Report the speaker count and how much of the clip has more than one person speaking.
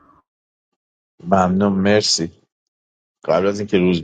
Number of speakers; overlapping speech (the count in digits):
1, no overlap